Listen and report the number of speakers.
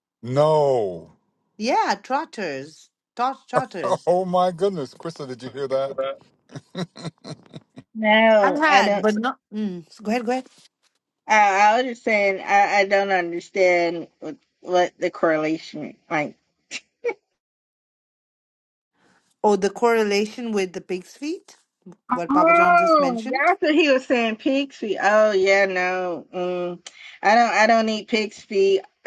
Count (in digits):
3